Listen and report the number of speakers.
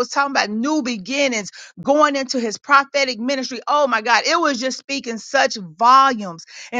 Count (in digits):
1